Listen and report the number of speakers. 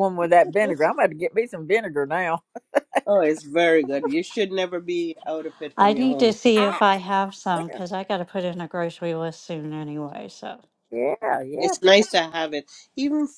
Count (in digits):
3